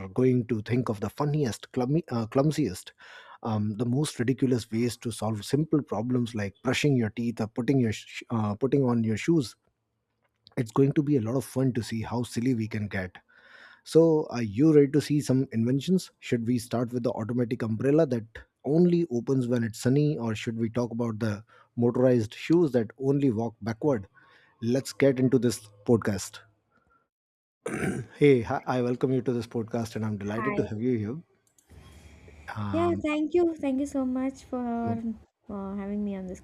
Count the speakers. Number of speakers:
2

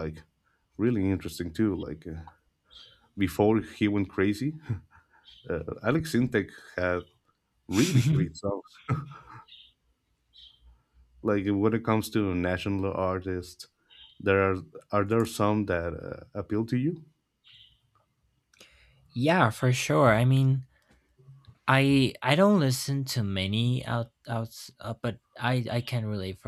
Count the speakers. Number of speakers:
2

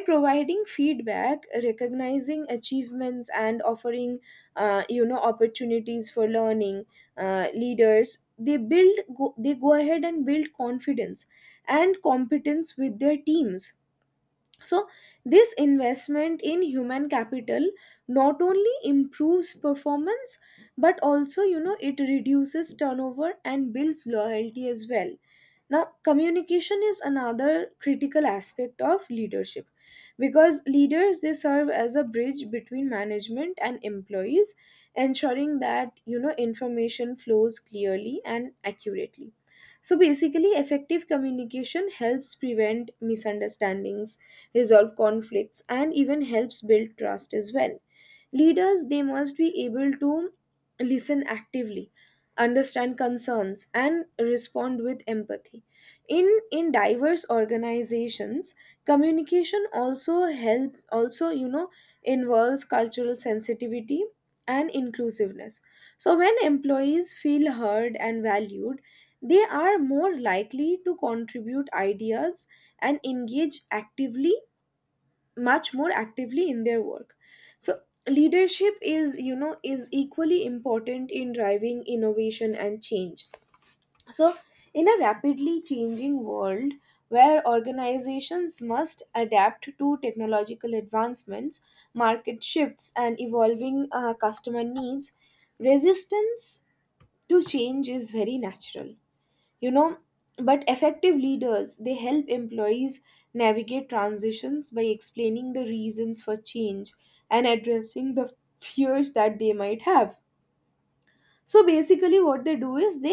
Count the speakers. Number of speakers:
1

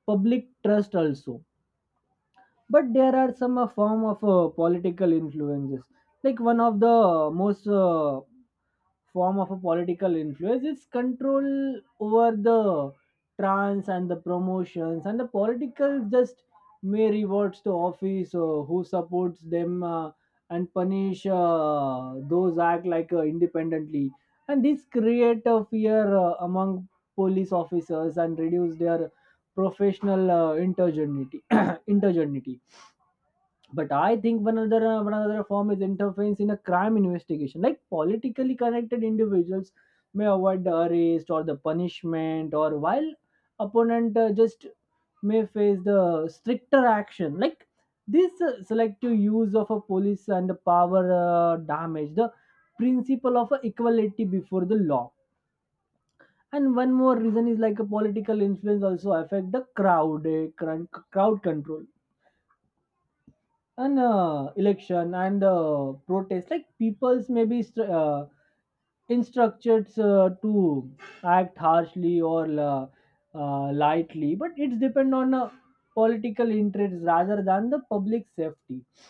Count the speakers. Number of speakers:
1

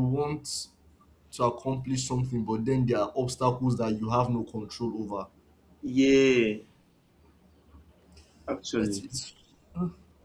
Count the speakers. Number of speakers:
2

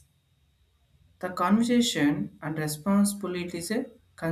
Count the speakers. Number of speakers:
1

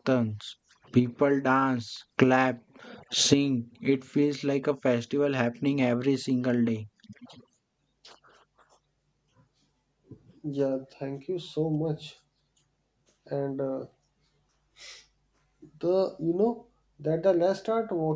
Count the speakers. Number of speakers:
2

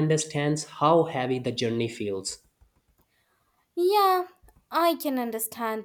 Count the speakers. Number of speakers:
2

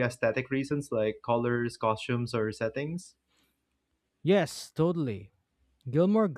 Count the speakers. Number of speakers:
2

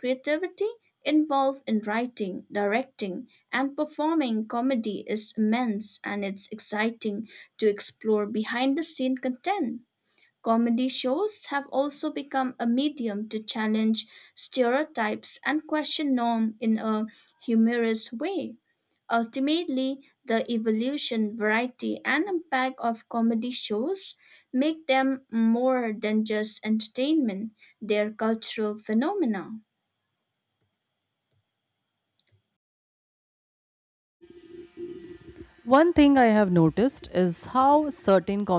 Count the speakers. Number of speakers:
2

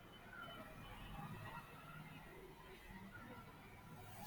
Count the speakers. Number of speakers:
0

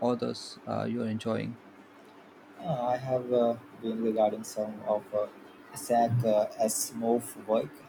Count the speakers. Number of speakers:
2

